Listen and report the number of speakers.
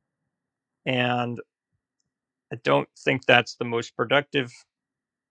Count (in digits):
1